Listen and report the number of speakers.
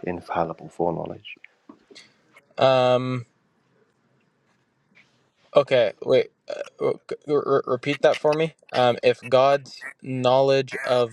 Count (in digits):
2